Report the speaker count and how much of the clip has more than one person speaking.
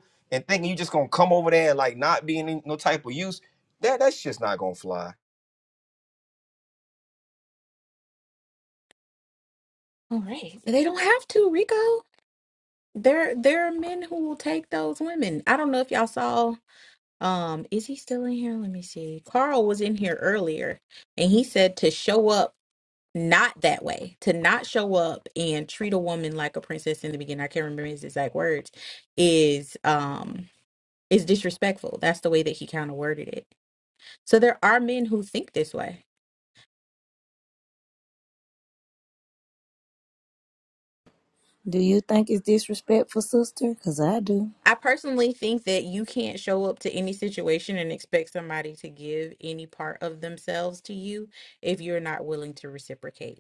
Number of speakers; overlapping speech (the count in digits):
3, no overlap